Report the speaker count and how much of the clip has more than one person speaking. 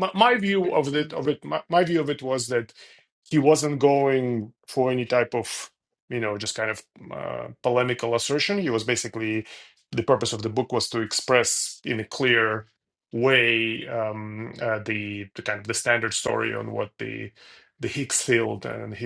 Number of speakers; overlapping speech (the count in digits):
1, no overlap